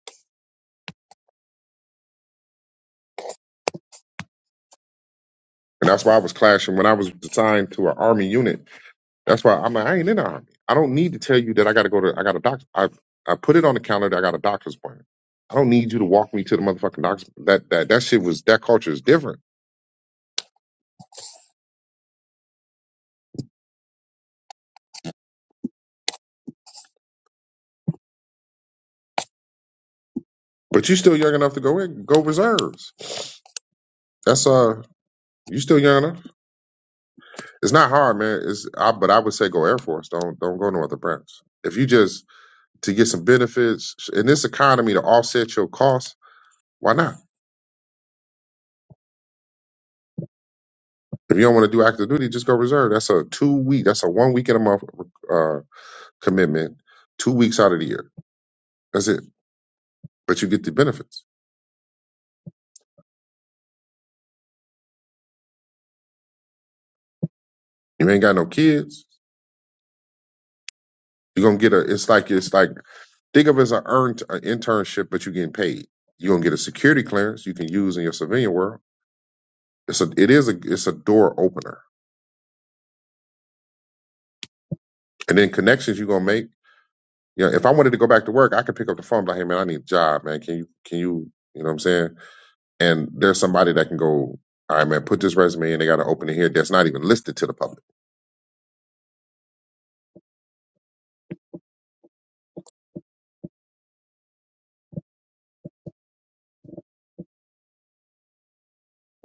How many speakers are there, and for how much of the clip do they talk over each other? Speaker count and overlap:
1, no overlap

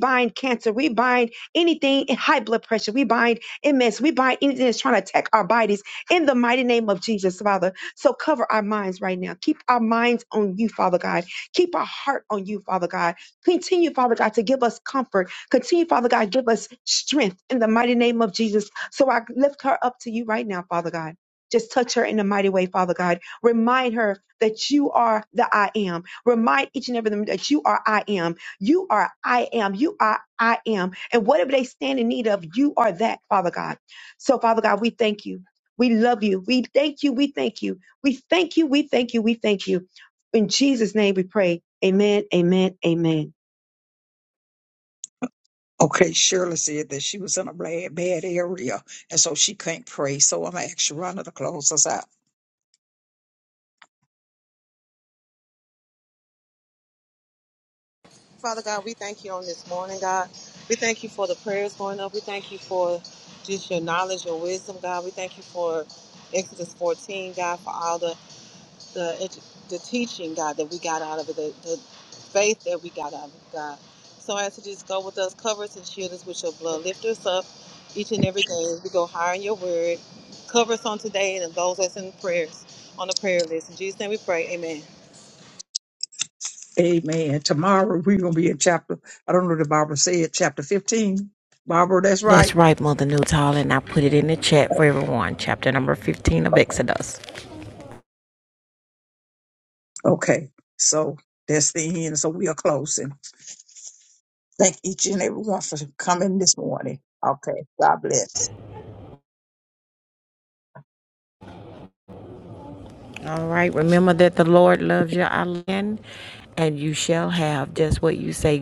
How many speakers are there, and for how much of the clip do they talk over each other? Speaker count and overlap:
4, under 1%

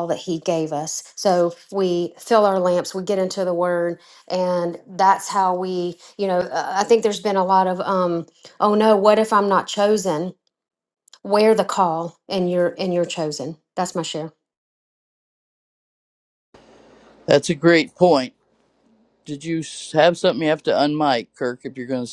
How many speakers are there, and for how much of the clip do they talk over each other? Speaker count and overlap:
2, no overlap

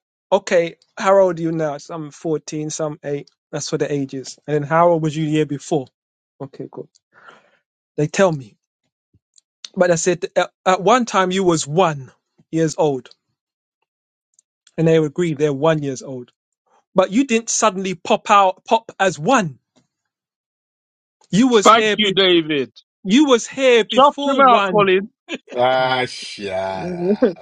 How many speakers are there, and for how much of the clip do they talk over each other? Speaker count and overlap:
3, about 5%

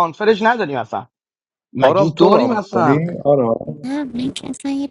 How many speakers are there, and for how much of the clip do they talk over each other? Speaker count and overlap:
3, about 24%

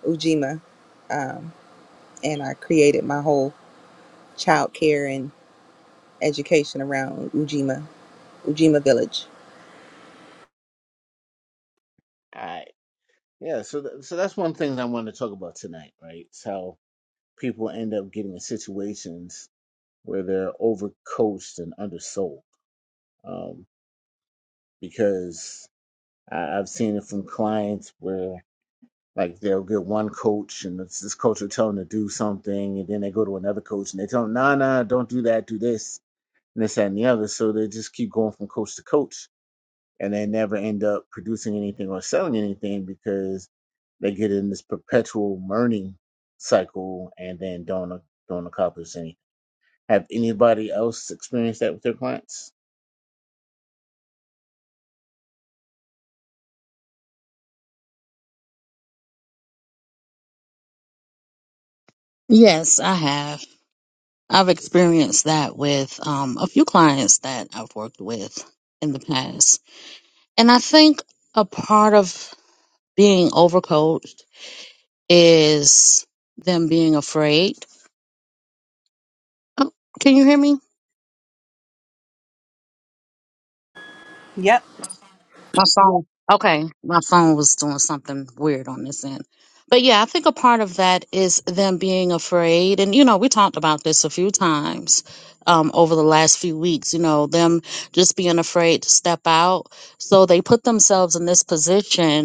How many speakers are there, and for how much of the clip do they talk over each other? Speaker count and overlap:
3, no overlap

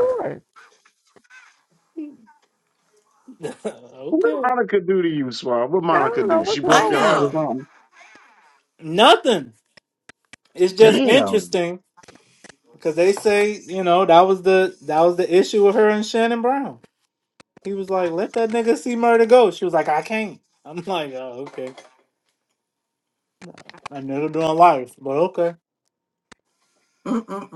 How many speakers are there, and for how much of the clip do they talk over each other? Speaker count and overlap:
4, about 9%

